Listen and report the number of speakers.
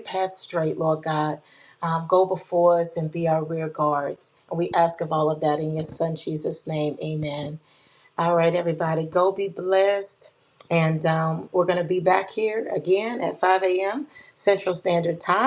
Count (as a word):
one